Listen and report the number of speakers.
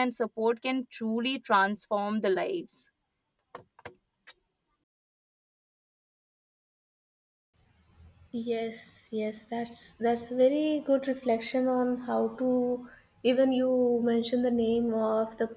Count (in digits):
2